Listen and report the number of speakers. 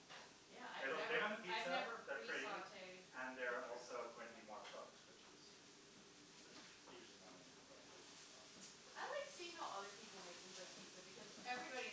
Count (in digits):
2